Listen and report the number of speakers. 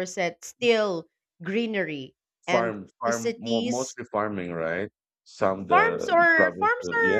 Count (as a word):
two